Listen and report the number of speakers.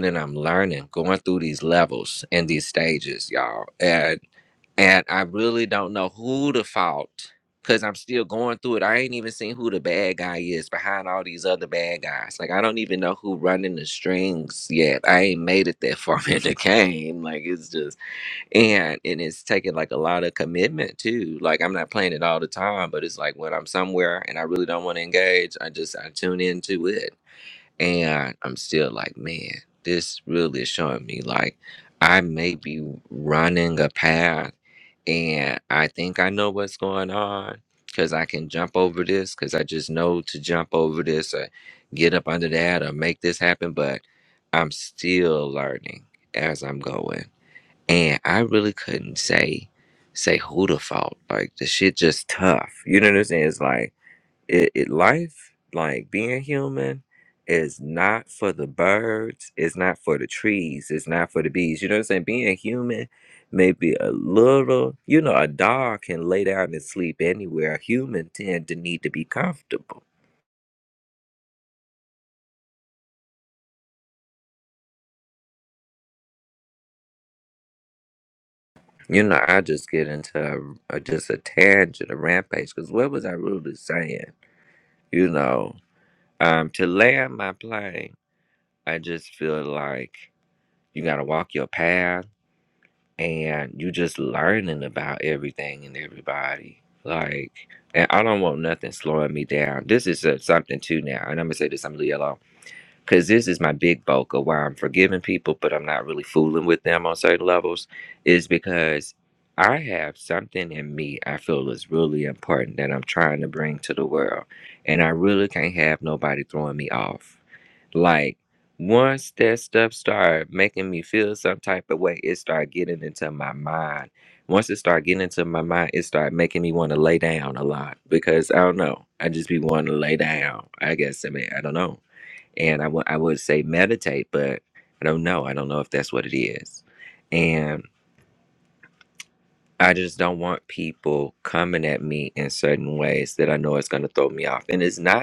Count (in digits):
1